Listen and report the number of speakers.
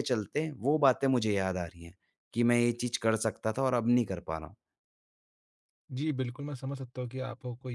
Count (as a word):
two